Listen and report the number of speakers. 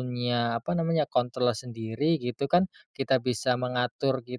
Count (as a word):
one